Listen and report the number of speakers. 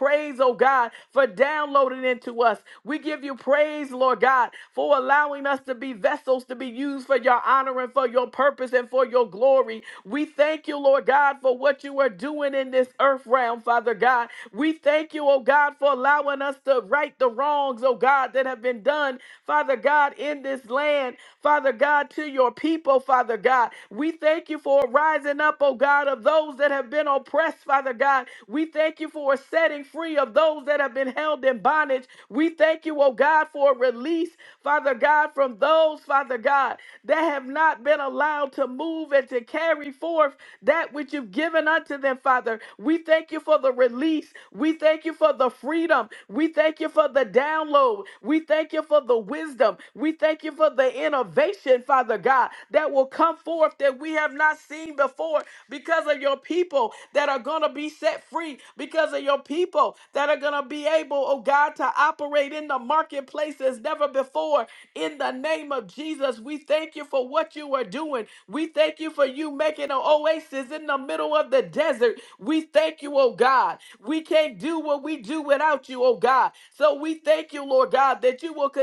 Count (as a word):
one